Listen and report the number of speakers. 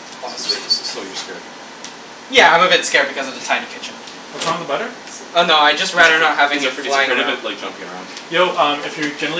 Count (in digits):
3